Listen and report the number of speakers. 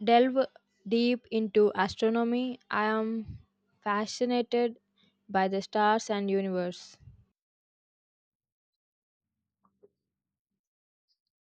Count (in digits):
1